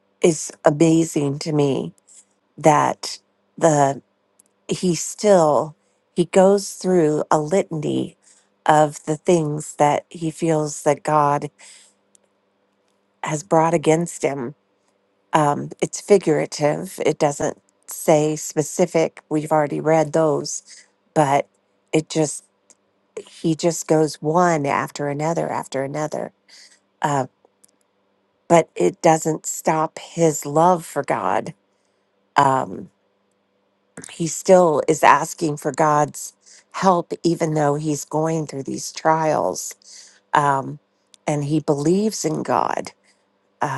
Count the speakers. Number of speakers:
one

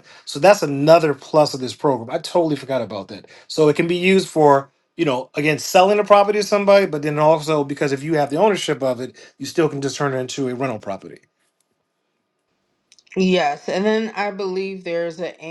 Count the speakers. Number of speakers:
two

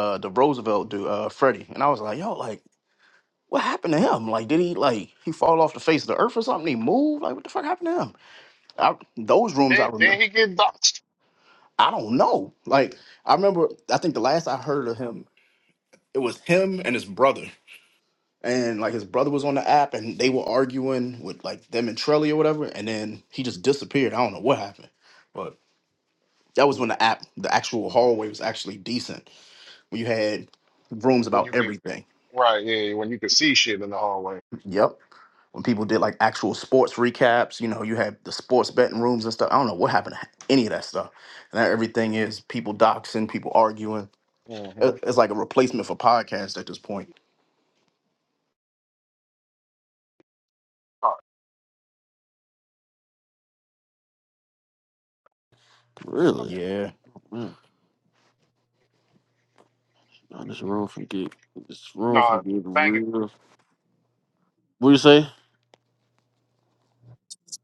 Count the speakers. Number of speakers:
three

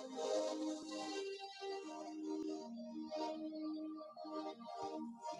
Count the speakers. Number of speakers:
zero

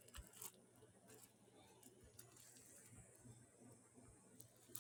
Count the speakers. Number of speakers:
zero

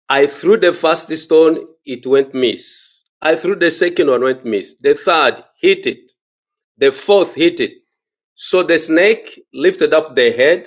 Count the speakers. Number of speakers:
one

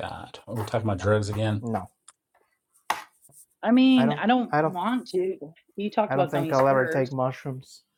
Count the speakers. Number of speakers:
three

